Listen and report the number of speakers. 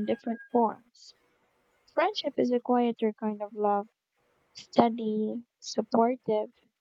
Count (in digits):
1